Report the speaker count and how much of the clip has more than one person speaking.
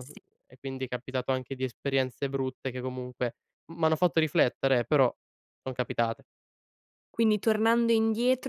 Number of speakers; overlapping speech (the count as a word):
two, under 1%